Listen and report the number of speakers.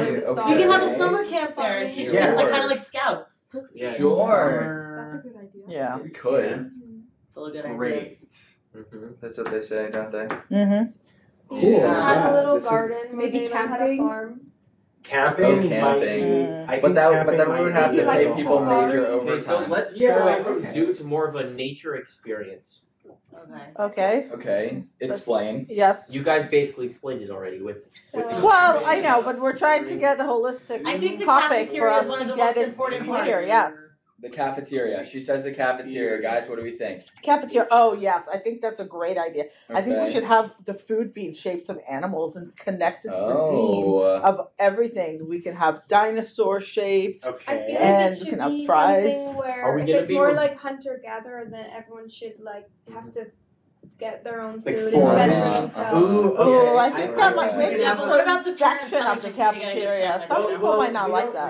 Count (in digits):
7